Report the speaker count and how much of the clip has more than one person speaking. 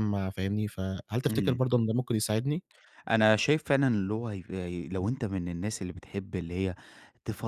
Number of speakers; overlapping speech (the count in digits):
2, about 5%